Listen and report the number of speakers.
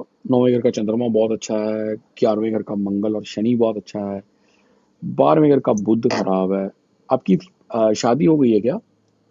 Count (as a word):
one